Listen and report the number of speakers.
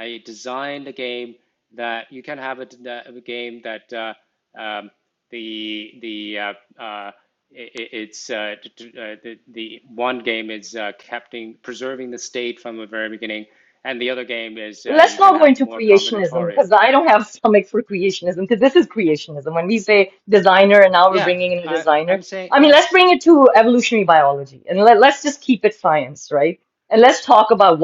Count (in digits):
2